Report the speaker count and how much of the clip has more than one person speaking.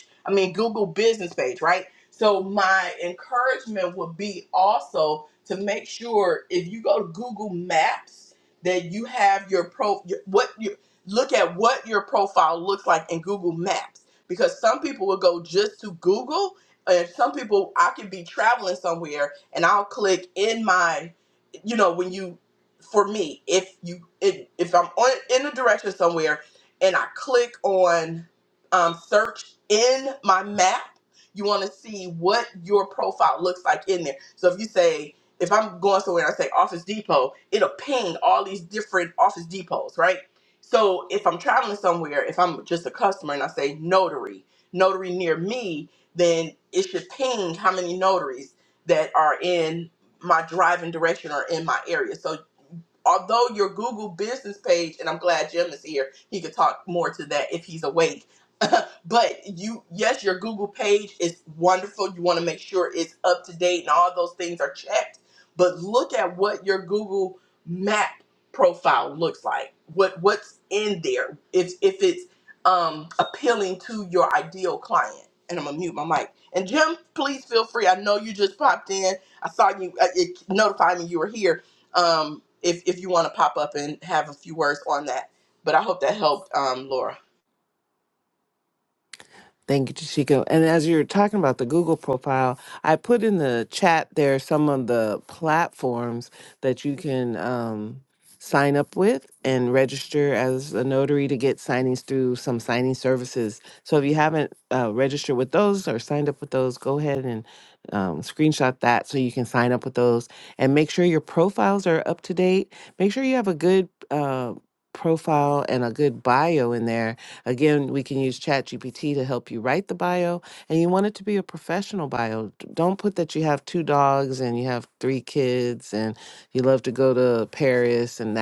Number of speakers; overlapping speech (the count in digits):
2, no overlap